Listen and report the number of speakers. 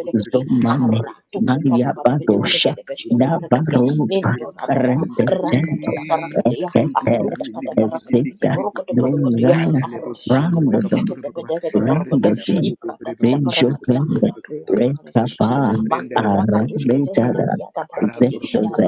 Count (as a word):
three